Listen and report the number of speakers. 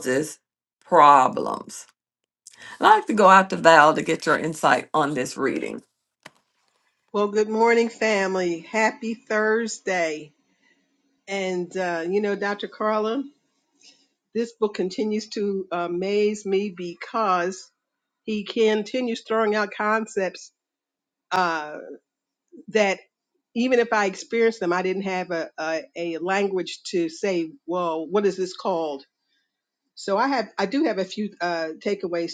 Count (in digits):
2